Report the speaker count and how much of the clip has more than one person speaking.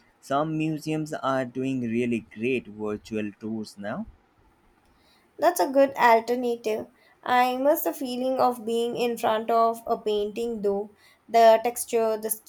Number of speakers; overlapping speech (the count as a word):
two, no overlap